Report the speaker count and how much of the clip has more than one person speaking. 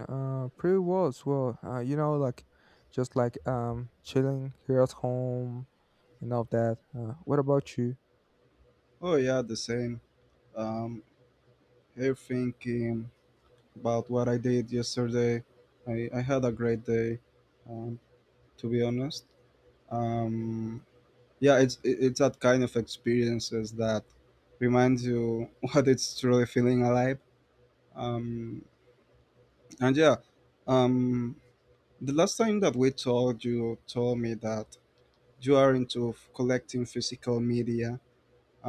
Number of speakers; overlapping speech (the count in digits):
2, no overlap